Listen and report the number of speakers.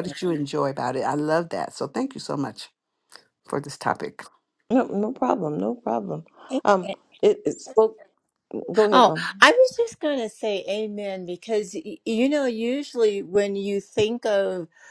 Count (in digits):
3